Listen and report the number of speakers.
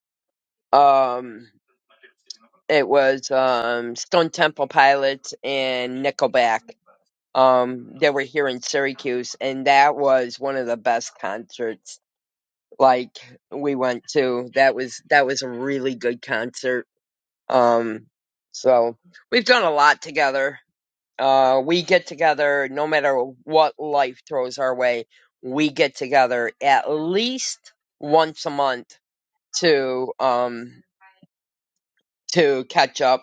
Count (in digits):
1